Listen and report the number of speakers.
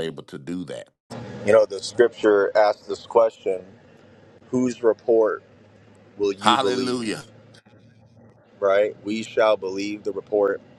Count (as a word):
two